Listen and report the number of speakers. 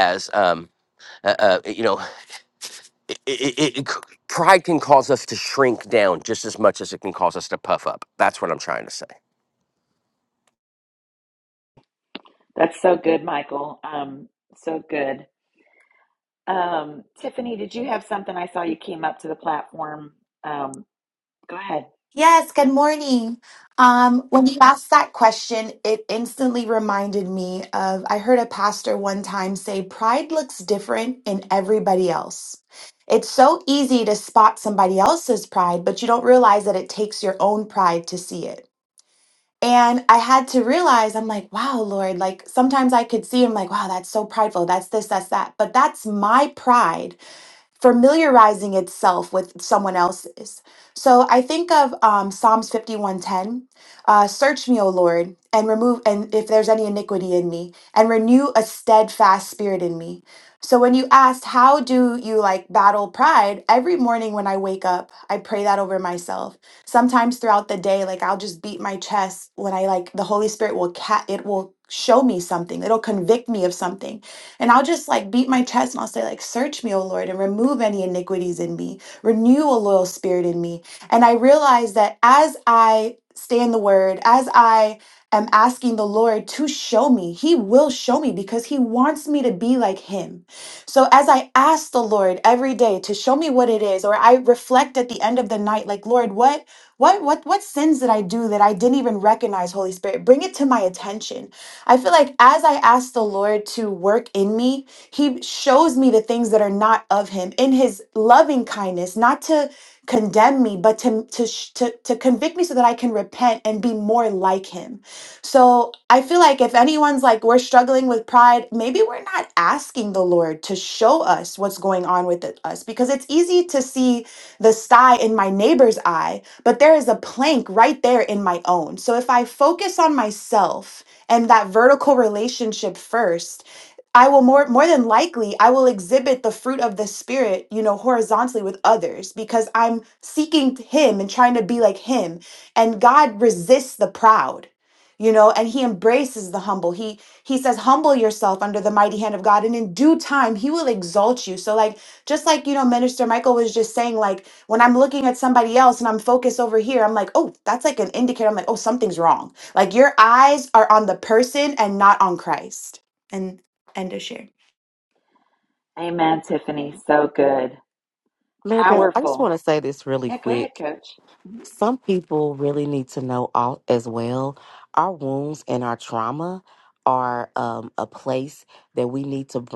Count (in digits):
4